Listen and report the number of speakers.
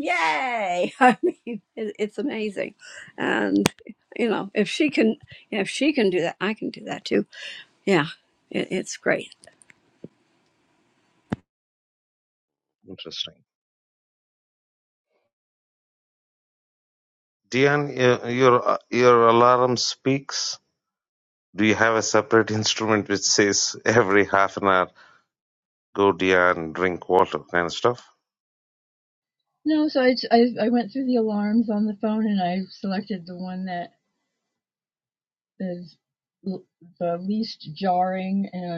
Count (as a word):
three